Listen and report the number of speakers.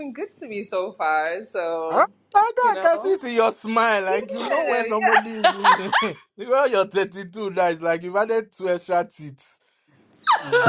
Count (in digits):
2